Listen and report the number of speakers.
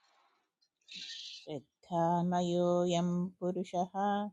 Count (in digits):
1